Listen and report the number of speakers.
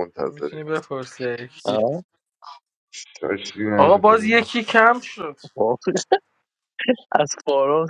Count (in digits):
3